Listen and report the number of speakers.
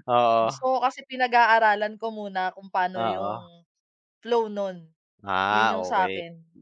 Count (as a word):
two